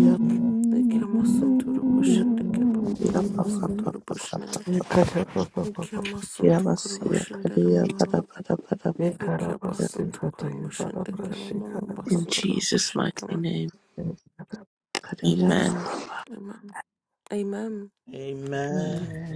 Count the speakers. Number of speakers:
5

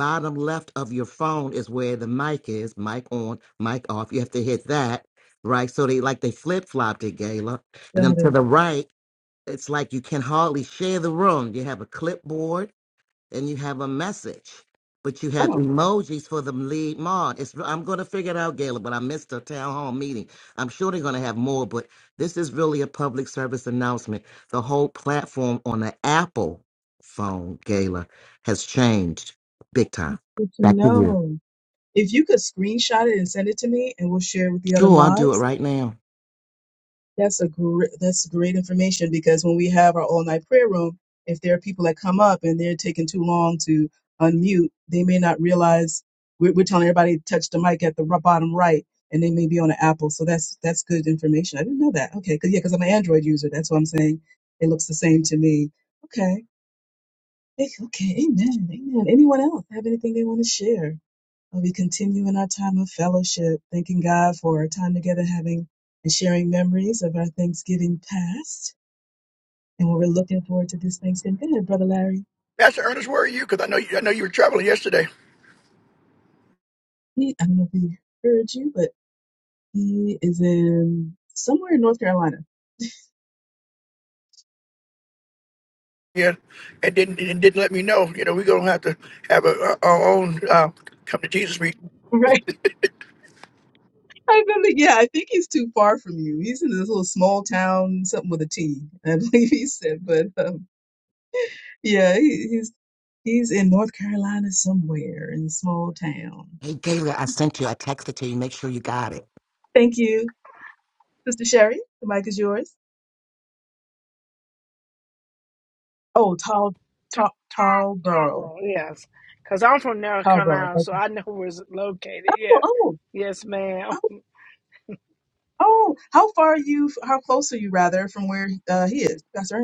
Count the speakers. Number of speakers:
4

